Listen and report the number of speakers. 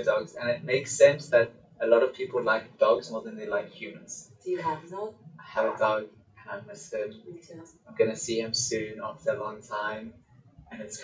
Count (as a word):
two